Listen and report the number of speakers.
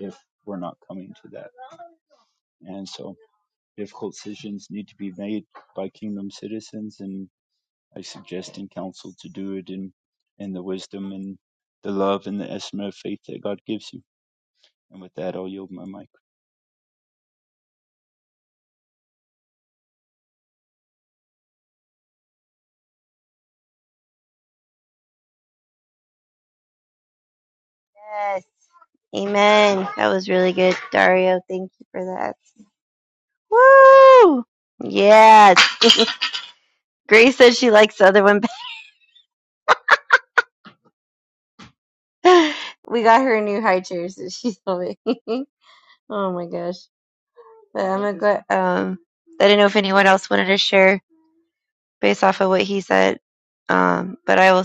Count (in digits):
2